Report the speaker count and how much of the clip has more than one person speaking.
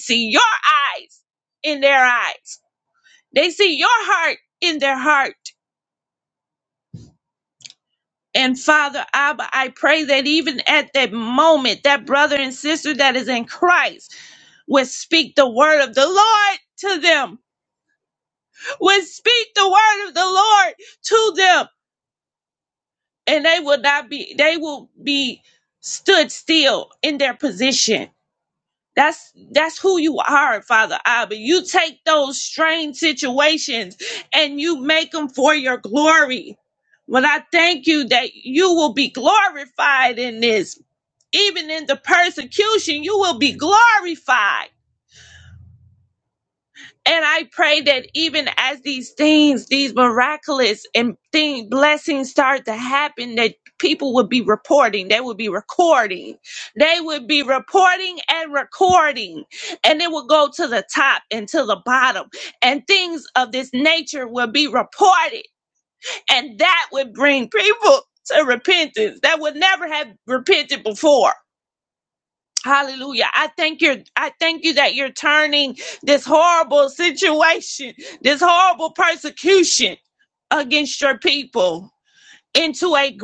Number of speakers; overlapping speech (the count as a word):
one, no overlap